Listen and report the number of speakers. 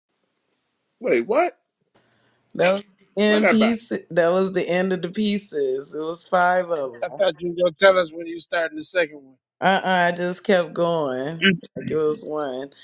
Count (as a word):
three